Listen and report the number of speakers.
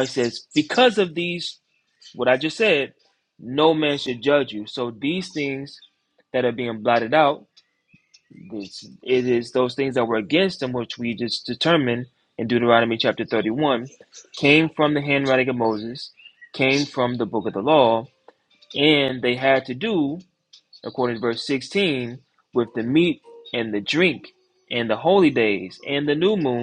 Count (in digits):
1